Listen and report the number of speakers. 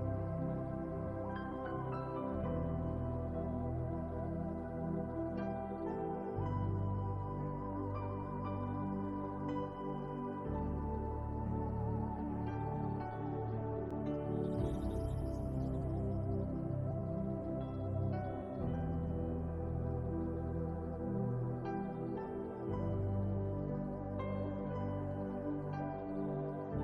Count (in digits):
0